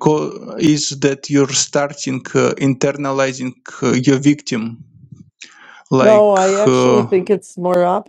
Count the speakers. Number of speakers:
2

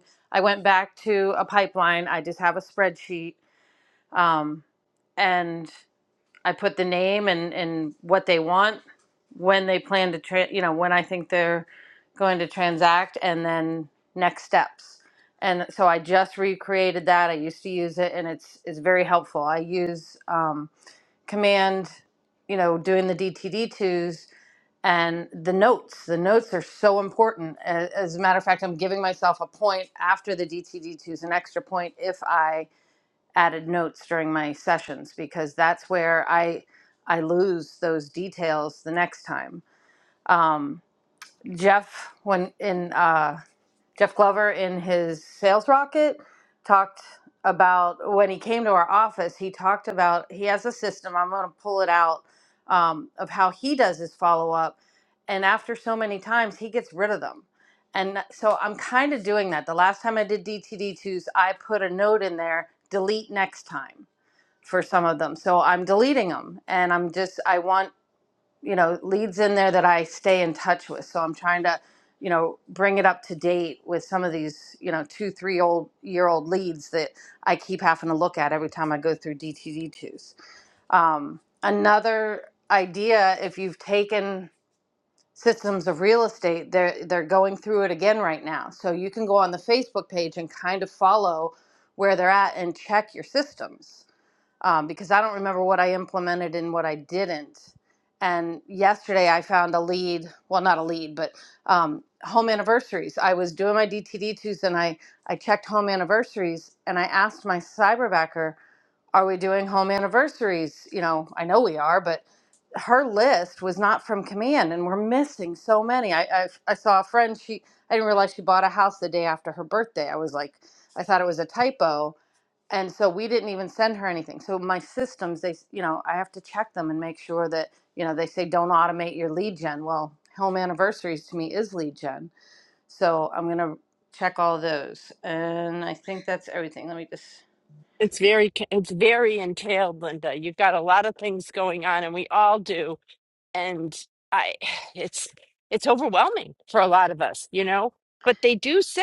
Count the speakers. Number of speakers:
2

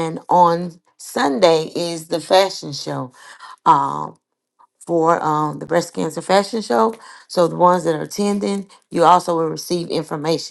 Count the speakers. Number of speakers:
1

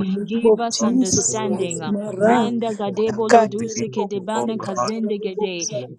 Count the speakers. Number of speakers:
2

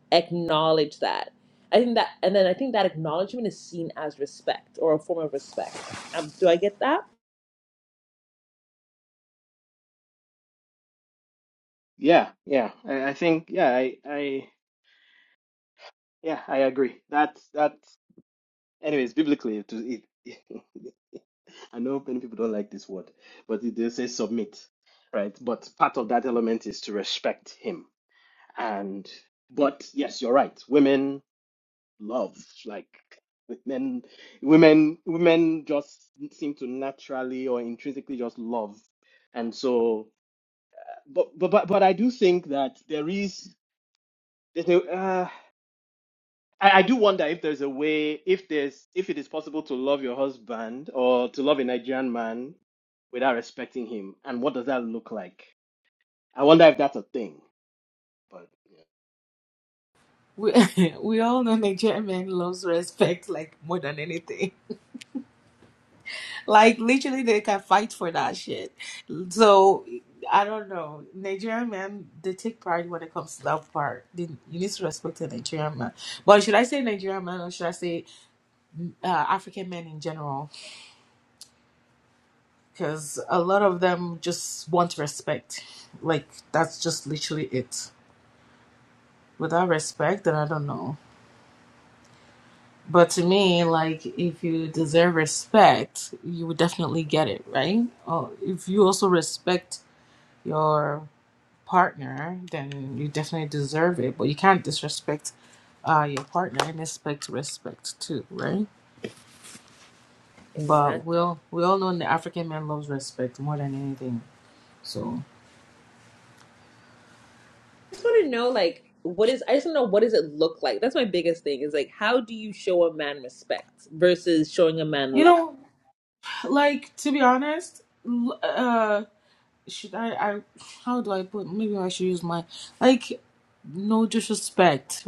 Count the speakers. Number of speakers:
3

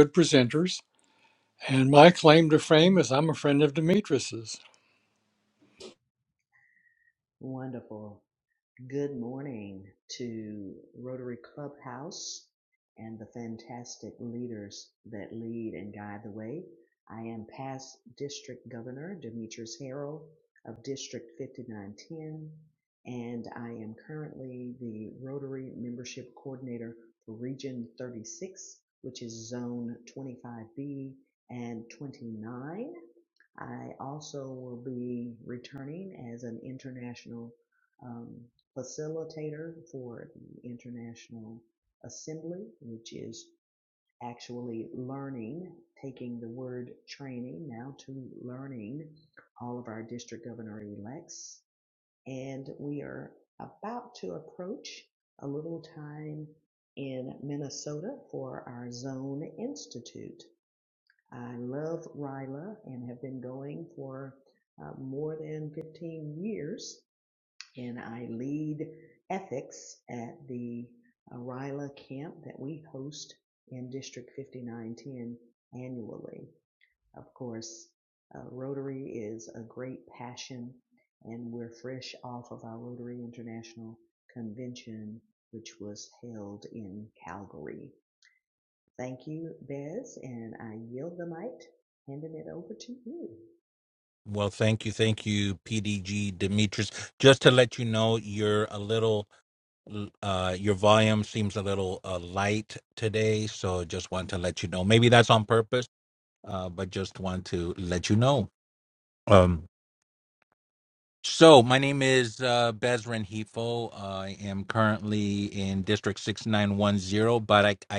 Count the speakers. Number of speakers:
3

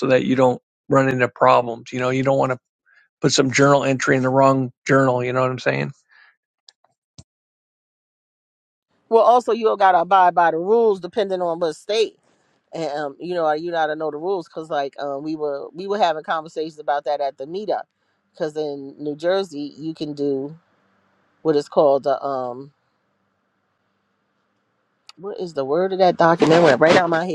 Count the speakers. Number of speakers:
2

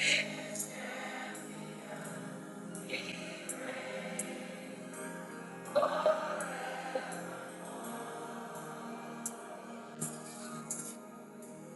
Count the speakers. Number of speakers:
0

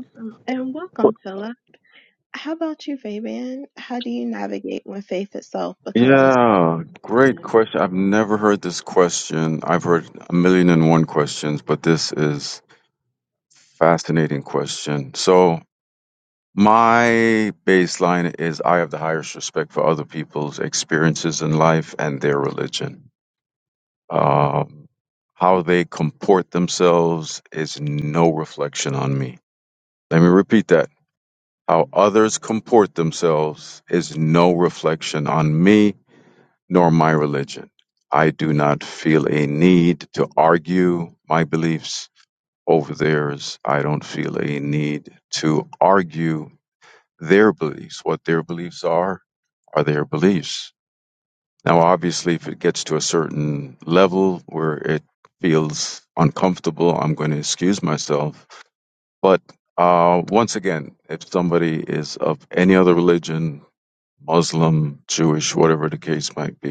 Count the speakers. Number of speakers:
2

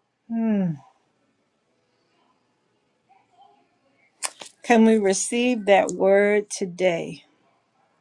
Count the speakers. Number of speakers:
1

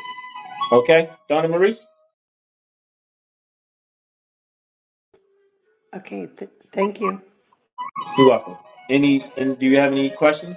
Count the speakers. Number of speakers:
2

